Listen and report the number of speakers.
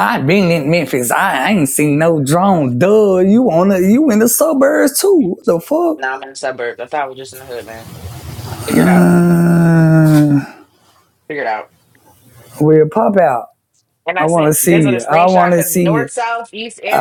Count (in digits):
2